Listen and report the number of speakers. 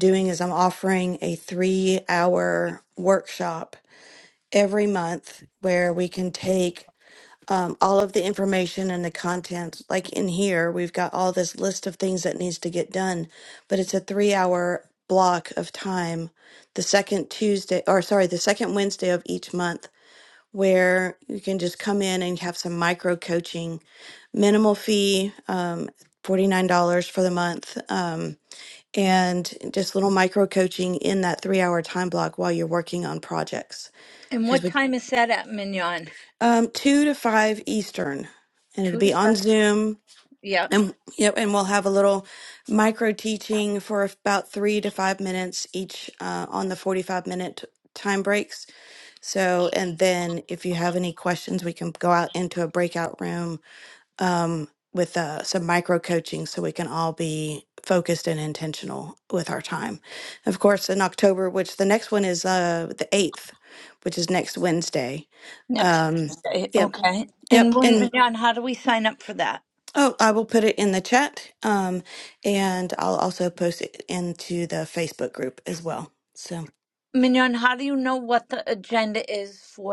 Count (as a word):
two